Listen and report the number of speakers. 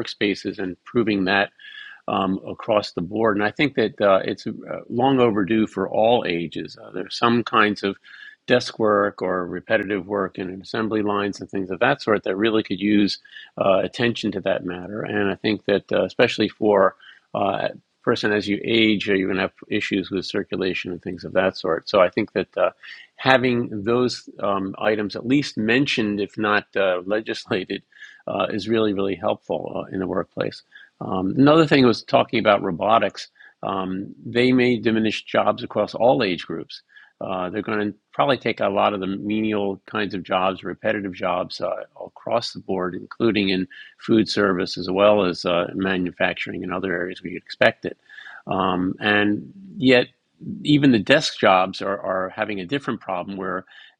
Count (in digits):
1